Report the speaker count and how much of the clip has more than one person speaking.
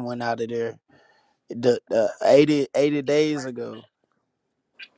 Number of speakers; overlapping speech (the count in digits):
1, no overlap